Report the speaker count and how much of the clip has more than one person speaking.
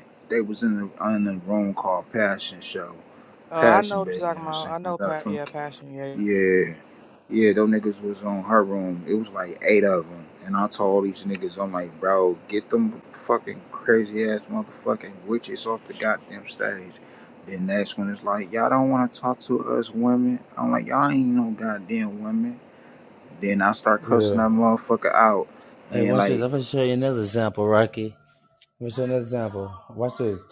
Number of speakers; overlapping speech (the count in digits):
3, about 9%